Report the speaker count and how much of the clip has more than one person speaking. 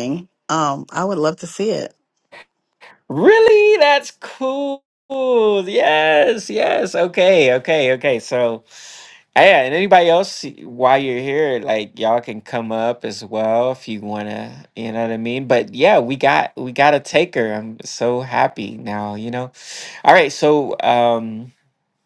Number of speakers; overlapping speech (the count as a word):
two, no overlap